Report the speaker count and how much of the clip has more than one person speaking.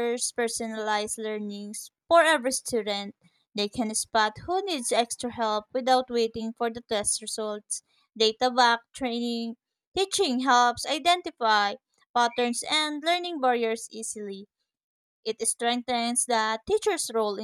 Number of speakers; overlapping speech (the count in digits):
1, no overlap